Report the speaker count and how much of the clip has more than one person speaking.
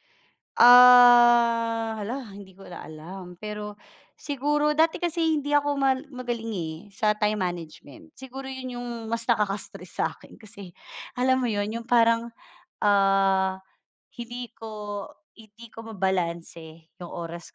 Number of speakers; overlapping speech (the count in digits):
1, no overlap